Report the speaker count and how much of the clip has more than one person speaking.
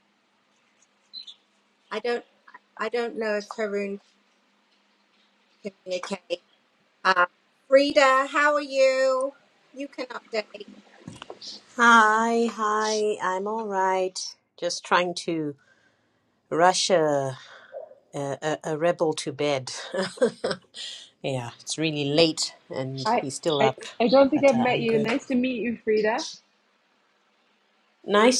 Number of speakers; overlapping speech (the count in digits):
3, about 5%